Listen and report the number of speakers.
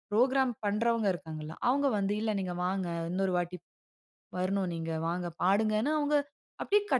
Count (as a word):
one